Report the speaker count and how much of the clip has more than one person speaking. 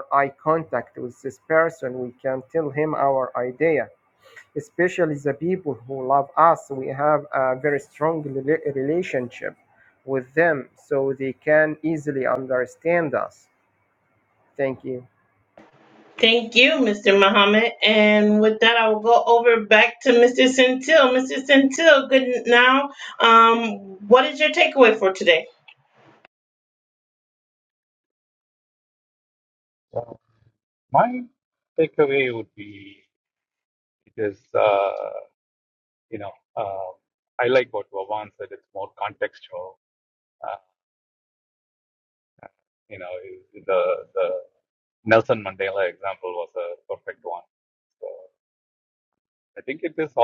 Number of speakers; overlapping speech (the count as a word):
three, no overlap